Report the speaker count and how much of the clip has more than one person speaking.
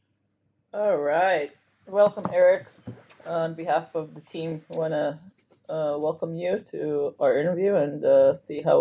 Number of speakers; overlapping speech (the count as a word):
one, no overlap